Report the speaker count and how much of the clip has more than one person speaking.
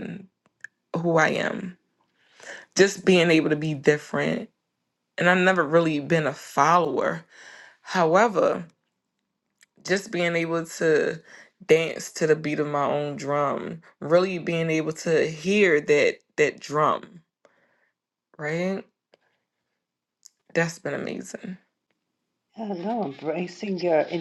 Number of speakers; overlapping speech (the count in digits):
2, no overlap